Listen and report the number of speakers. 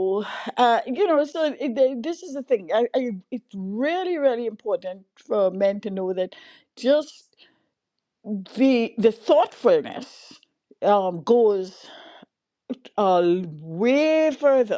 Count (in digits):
1